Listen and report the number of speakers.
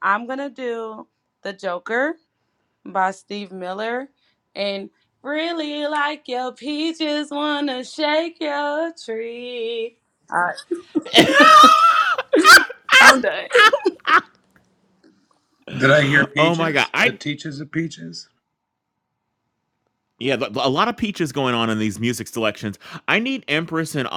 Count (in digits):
3